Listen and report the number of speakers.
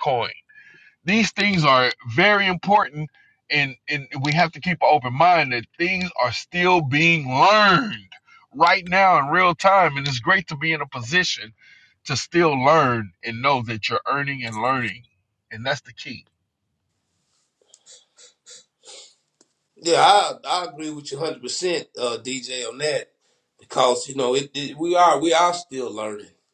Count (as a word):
two